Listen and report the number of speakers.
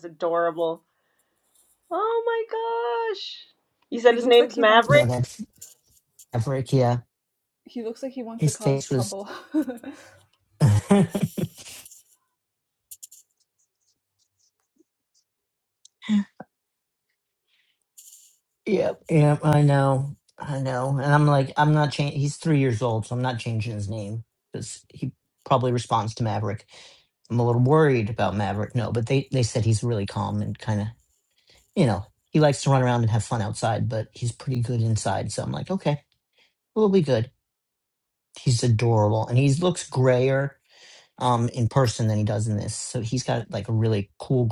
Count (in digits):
3